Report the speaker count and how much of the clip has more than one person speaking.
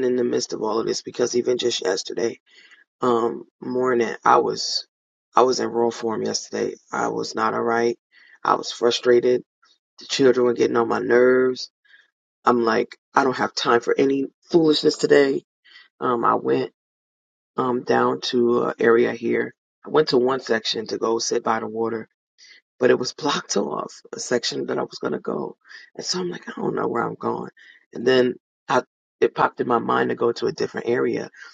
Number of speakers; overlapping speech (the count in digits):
1, no overlap